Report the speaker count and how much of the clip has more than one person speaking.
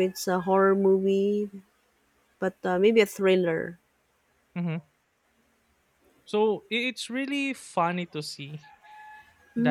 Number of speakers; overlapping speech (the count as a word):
two, about 1%